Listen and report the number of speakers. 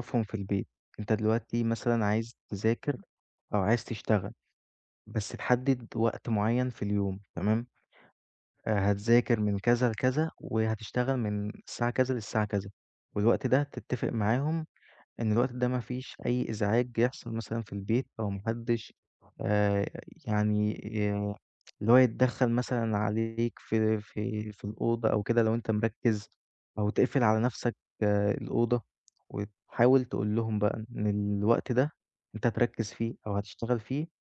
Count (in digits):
1